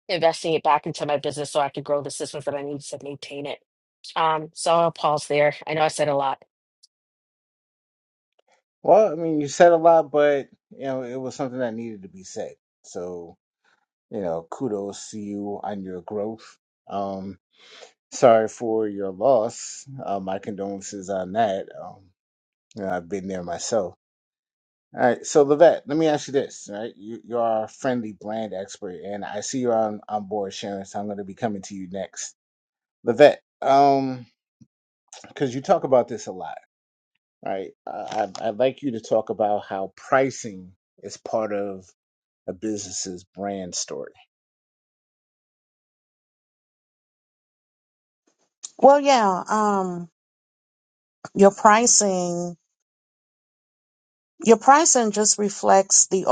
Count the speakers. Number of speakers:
3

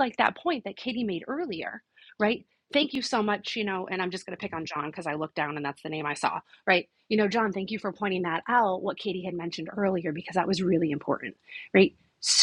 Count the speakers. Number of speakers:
1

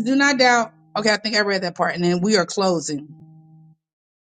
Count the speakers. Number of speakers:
1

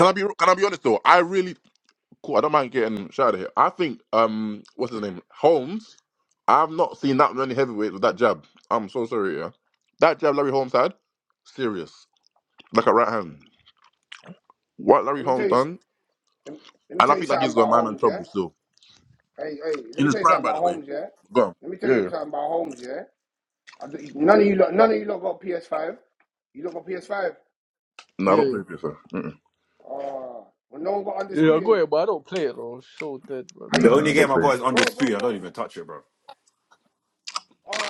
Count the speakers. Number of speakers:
4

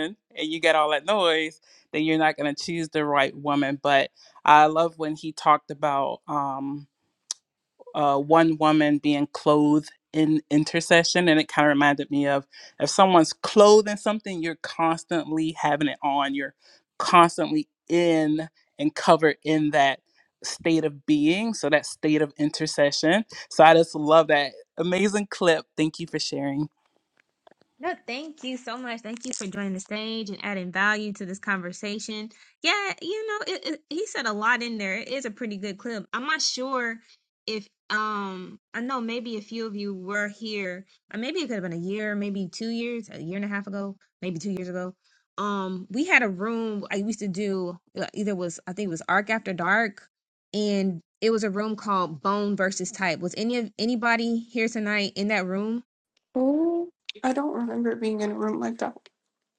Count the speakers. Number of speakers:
3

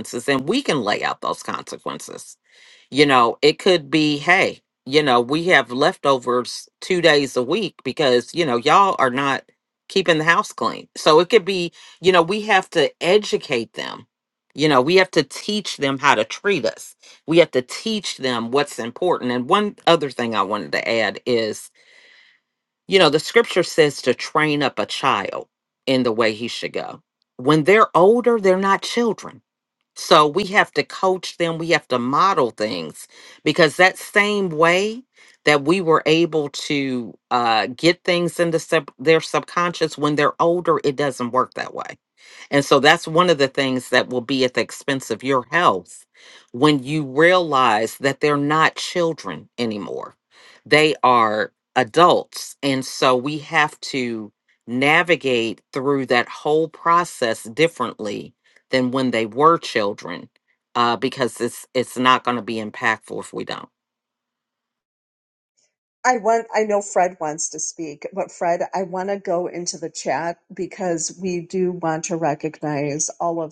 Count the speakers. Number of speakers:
2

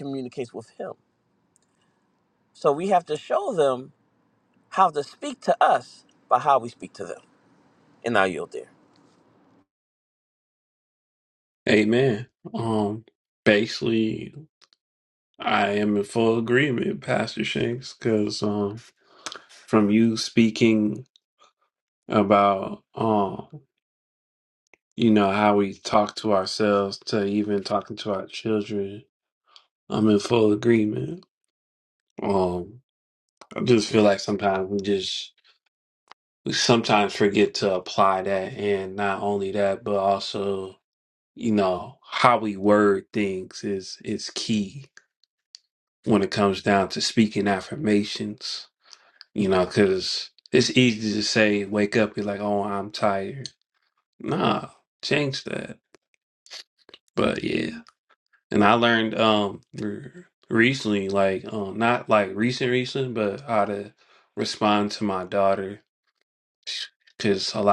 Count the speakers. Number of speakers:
2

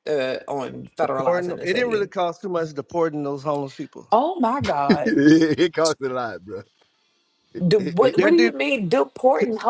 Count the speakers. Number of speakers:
3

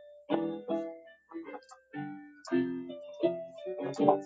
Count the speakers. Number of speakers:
0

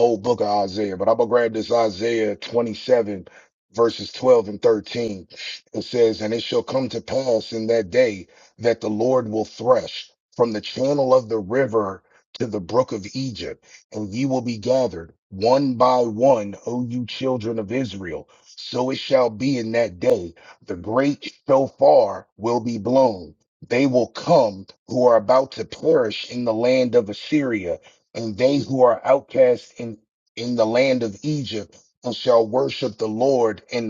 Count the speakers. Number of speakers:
1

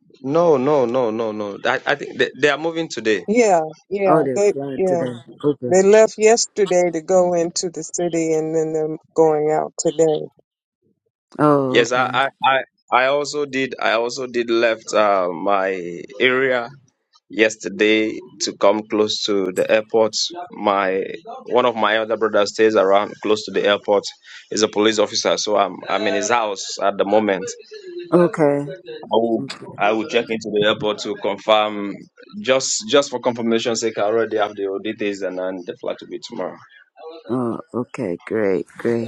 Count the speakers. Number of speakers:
3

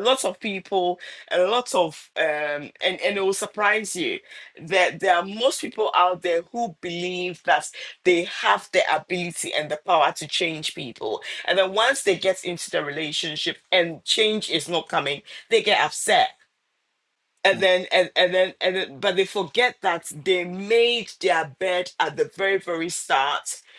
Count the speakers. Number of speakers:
1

